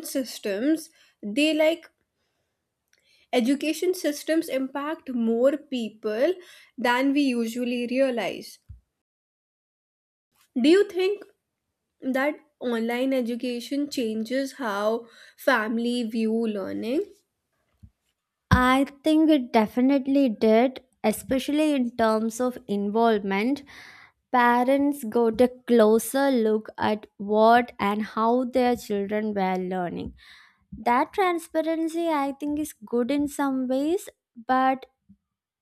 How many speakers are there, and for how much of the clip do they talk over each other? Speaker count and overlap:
2, no overlap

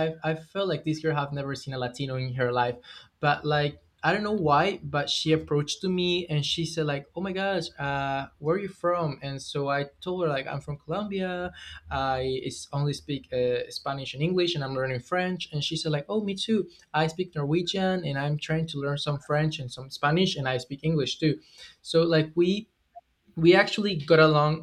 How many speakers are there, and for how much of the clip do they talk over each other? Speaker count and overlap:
1, no overlap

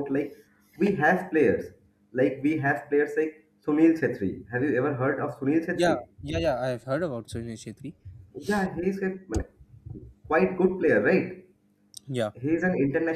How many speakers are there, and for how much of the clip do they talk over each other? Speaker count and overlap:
2, about 2%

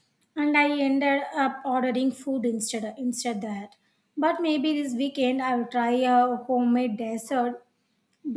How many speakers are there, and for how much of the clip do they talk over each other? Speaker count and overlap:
1, no overlap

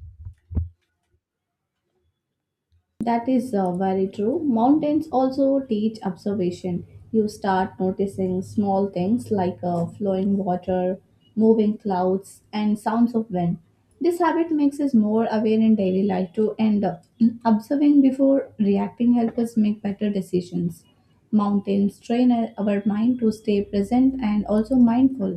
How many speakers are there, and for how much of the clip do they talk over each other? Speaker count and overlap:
1, no overlap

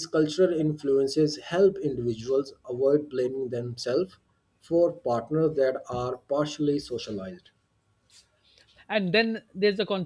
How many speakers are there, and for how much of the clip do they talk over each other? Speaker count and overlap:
2, no overlap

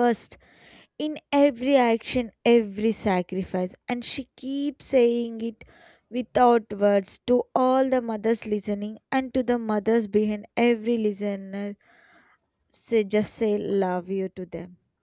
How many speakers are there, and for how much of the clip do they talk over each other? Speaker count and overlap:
1, no overlap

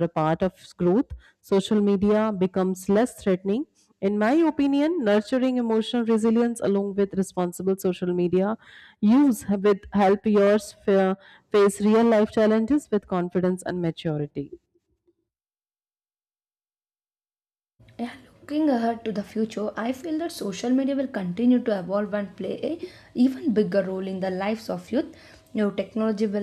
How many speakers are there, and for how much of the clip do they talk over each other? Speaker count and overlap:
2, no overlap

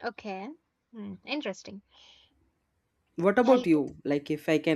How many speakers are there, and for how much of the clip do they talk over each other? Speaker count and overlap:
2, about 7%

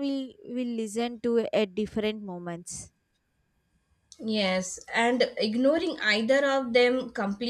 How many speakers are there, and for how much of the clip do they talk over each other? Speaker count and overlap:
2, no overlap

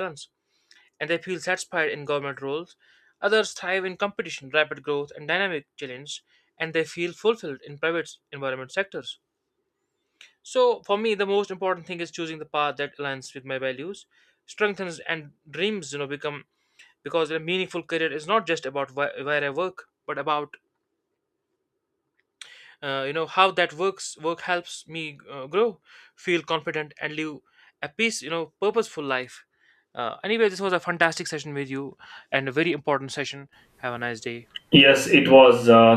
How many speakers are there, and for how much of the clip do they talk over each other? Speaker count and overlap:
2, no overlap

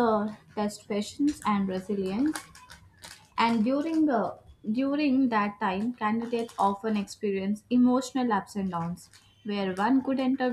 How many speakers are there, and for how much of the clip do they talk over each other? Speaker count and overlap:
1, no overlap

